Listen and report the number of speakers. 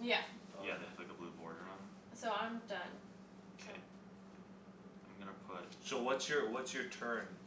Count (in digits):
3